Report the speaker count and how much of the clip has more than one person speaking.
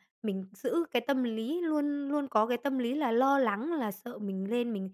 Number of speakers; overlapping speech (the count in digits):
1, no overlap